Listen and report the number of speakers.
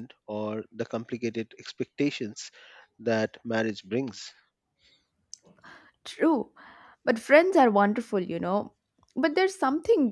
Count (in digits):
2